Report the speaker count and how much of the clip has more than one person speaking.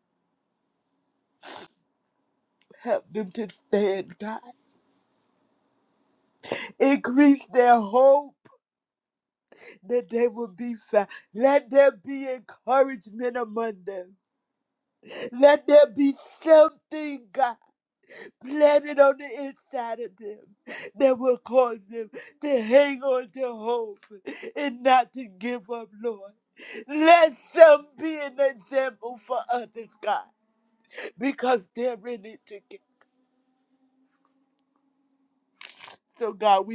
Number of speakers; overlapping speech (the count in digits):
1, no overlap